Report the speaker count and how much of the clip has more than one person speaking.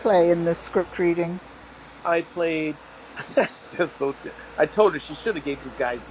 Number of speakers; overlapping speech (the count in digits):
2, no overlap